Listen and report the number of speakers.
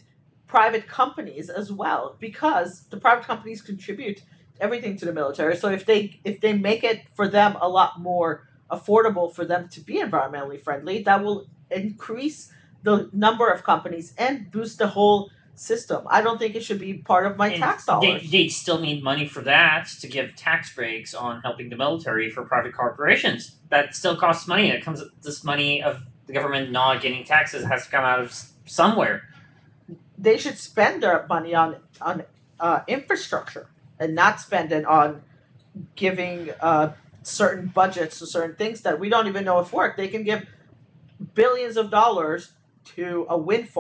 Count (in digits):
2